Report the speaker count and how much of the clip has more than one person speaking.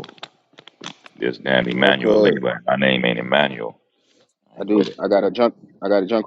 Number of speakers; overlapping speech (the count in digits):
2, about 17%